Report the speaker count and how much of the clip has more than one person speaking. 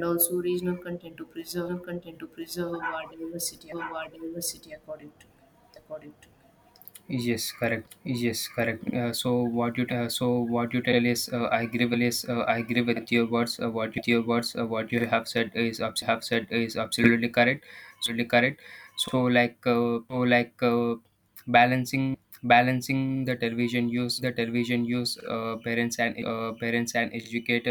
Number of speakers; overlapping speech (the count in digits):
2, no overlap